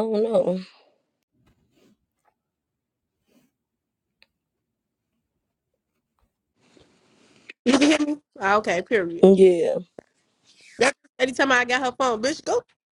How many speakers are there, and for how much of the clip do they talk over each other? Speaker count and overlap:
2, under 1%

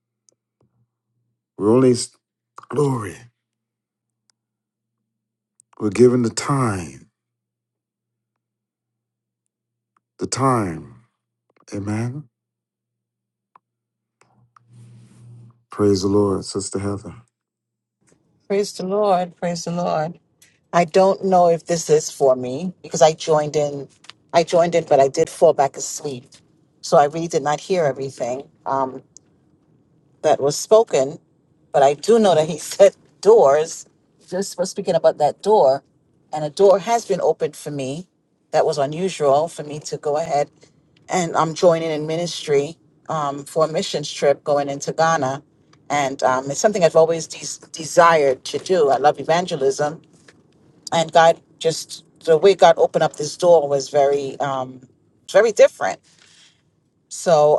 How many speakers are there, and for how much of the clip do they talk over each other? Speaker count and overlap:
2, no overlap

